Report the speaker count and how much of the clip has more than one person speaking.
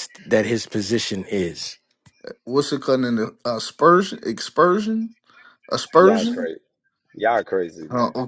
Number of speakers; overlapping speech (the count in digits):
3, about 8%